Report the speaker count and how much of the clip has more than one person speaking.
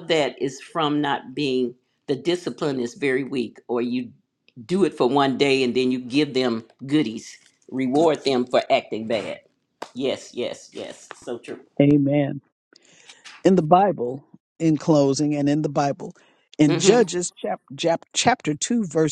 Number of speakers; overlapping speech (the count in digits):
2, about 2%